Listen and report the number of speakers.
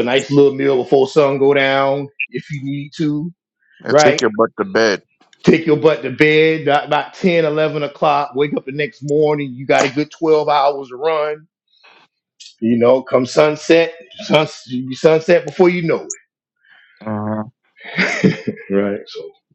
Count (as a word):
two